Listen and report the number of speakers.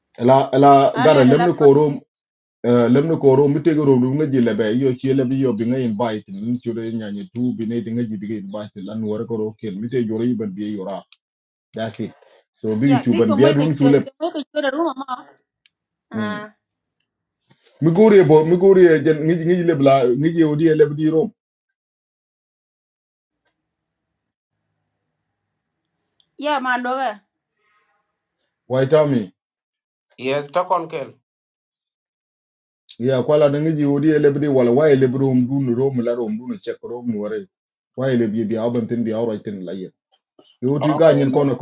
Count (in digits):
3